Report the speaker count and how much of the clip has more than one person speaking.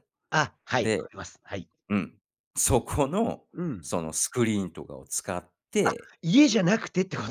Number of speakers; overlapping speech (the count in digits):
2, about 7%